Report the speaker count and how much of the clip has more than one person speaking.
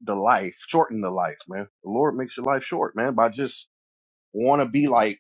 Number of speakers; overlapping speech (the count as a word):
one, no overlap